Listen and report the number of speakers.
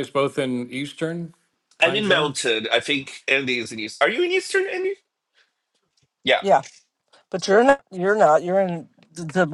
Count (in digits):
3